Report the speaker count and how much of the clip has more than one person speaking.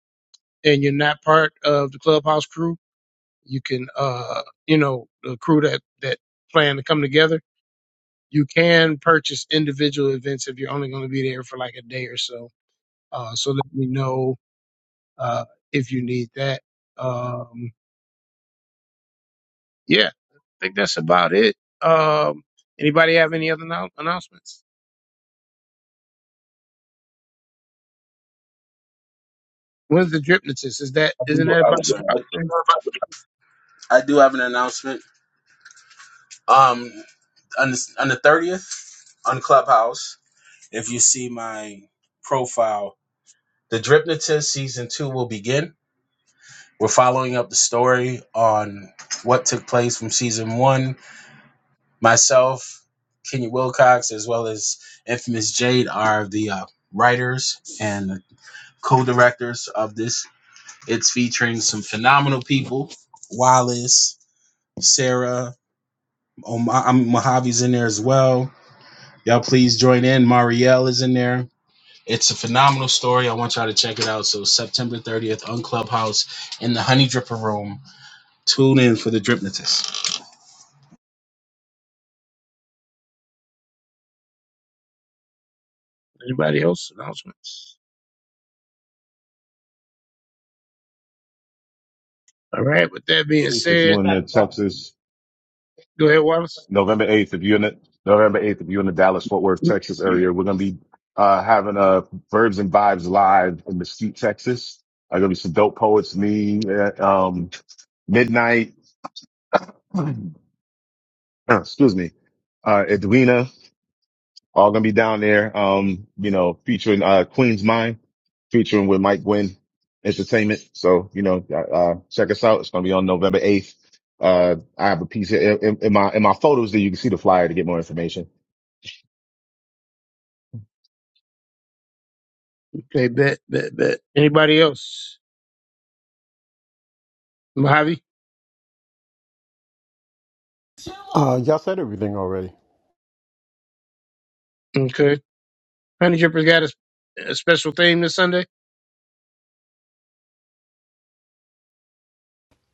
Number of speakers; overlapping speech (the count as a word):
four, about 1%